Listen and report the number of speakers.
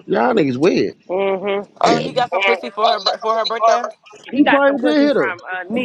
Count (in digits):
3